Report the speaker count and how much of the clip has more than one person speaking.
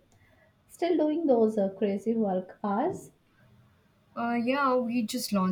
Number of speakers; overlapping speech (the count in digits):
2, no overlap